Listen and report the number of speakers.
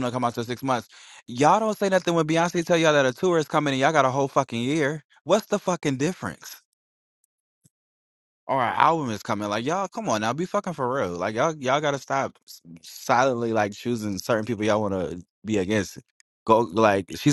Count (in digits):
1